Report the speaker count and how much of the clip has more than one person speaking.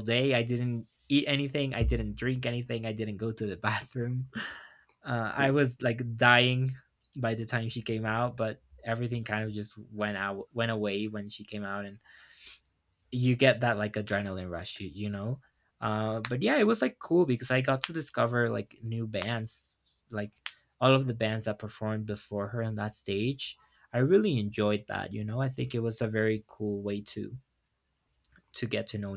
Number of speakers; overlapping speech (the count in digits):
1, no overlap